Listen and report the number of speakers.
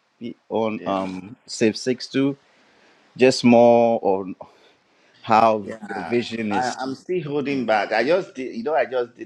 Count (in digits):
2